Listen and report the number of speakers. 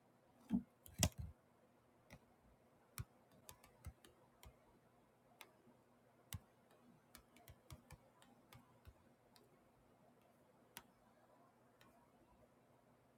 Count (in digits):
0